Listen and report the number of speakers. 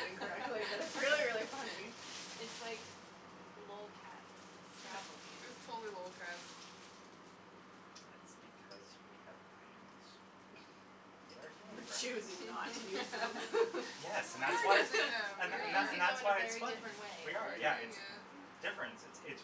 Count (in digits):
4